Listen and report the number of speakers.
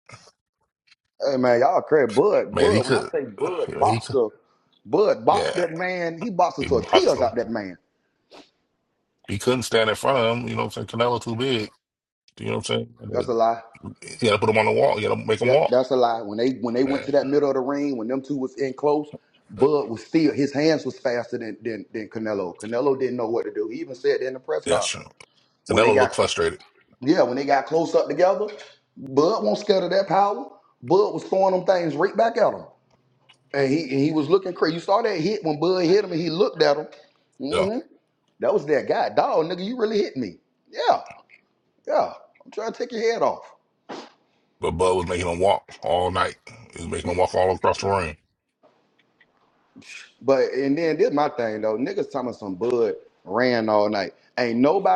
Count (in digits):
2